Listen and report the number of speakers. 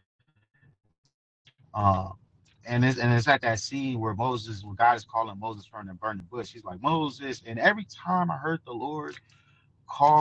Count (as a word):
one